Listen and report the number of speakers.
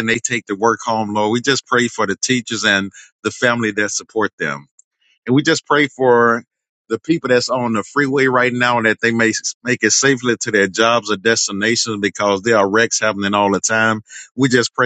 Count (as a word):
one